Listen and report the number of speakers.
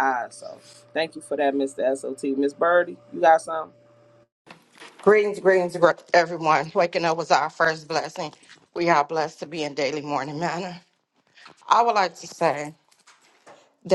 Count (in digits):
2